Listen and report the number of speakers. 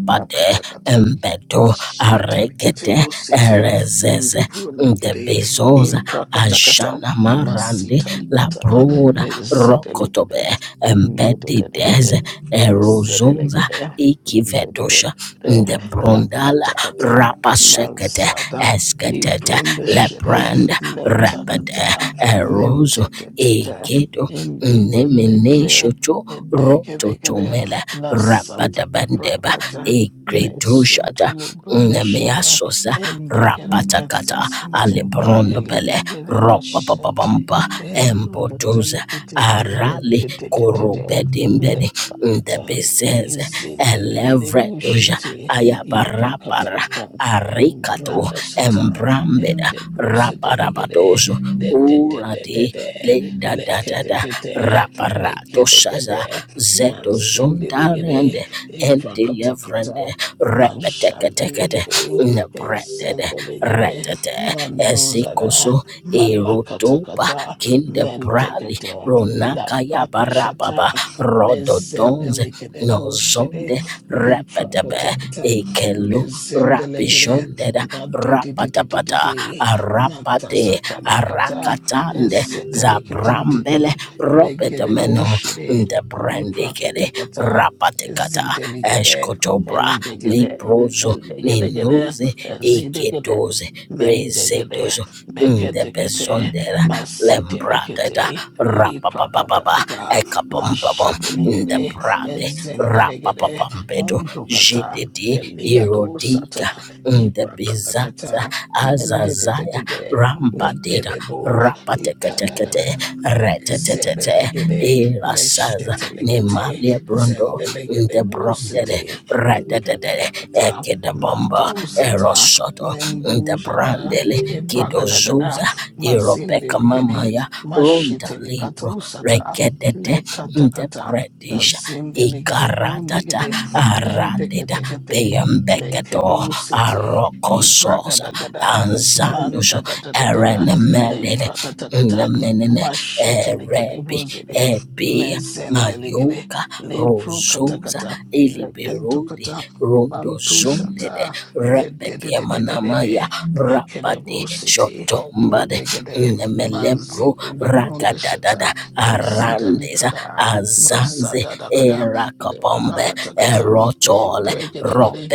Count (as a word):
two